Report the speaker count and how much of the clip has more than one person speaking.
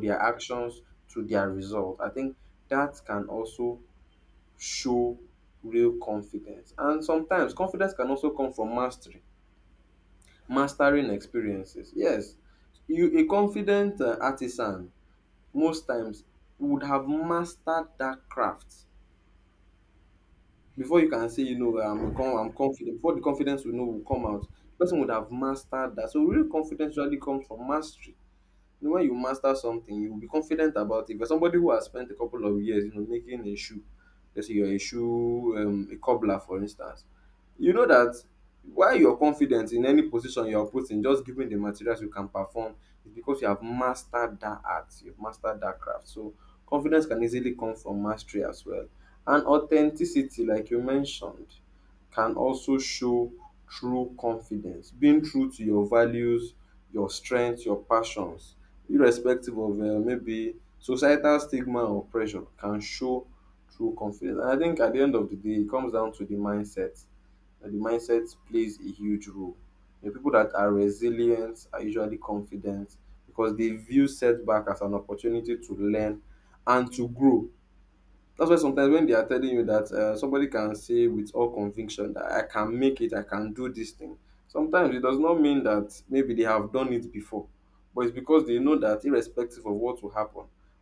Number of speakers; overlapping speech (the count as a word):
one, no overlap